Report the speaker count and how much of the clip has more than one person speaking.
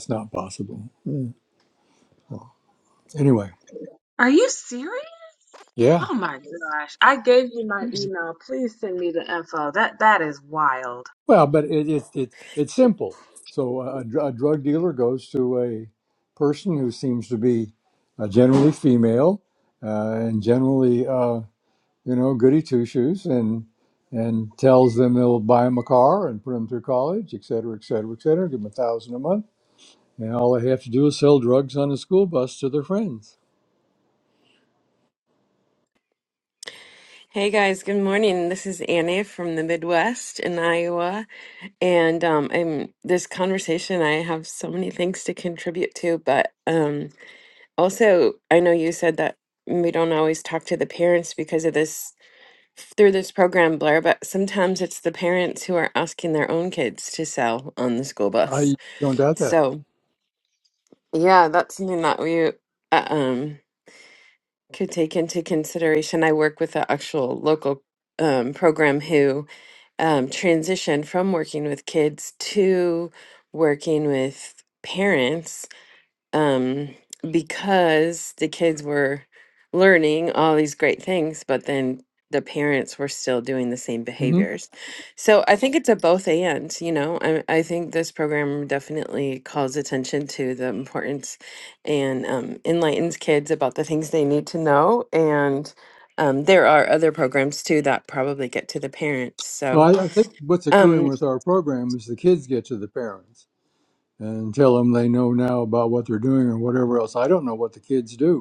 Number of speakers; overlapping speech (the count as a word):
three, about 1%